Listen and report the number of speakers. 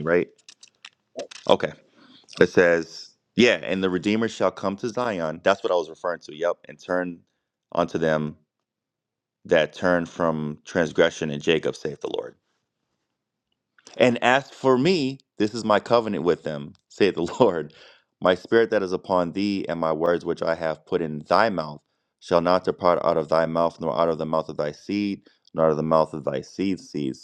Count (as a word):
one